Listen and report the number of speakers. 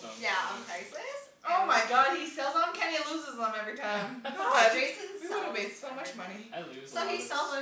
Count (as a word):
three